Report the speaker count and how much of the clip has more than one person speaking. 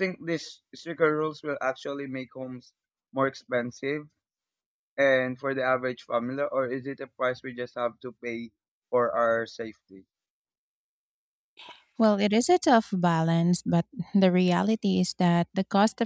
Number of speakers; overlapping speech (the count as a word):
two, no overlap